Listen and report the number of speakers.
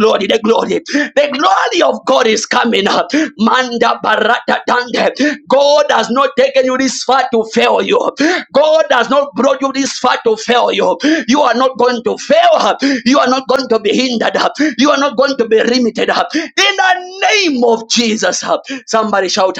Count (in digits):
1